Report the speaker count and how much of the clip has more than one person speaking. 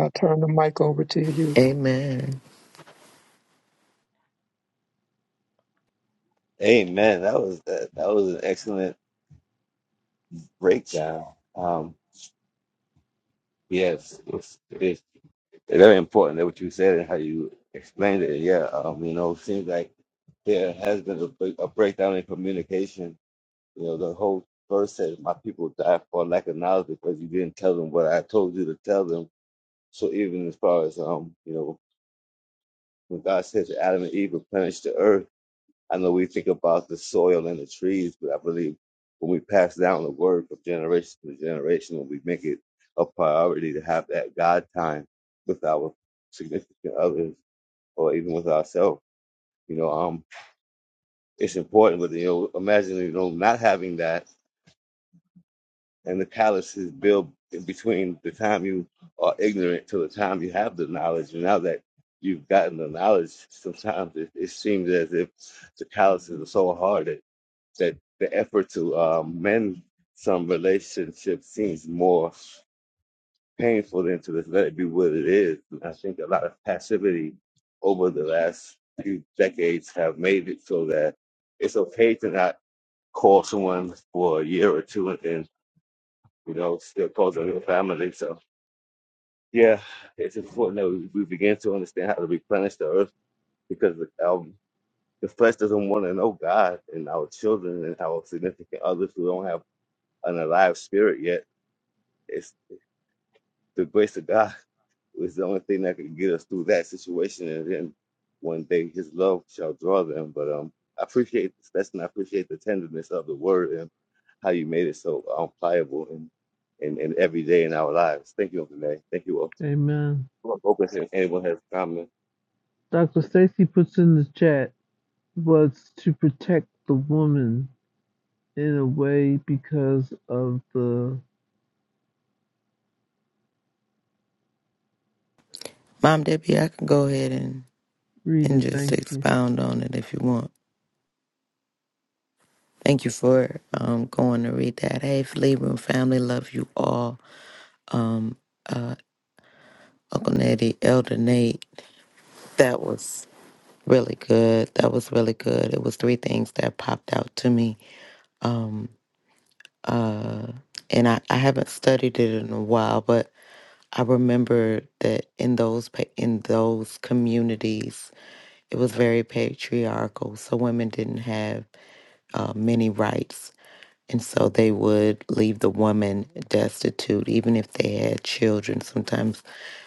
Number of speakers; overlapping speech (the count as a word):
four, under 1%